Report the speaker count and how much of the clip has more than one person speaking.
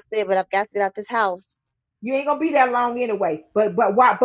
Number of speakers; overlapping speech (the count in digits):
2, no overlap